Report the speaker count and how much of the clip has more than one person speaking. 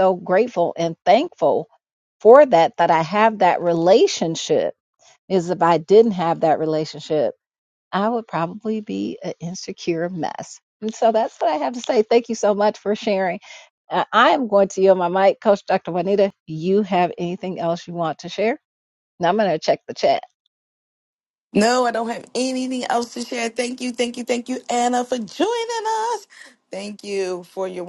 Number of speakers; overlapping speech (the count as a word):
two, no overlap